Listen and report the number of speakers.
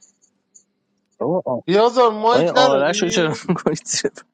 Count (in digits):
2